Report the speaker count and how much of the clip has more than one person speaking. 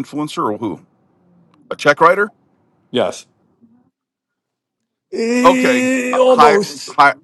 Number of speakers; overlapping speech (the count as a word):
two, about 20%